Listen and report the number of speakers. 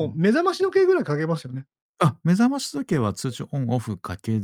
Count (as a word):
two